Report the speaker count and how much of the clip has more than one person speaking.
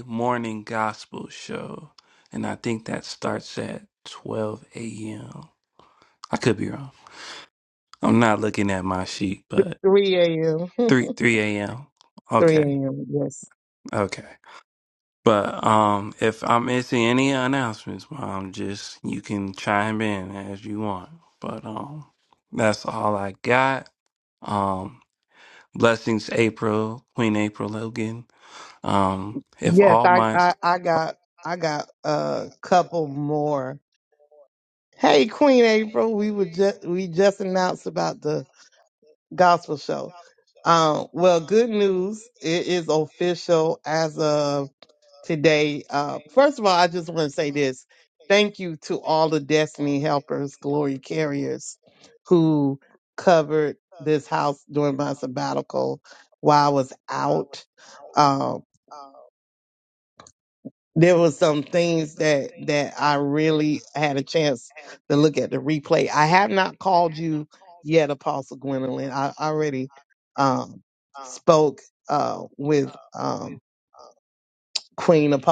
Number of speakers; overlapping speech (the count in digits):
2, about 2%